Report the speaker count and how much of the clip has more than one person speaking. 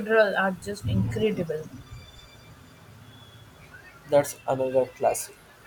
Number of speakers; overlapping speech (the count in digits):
2, no overlap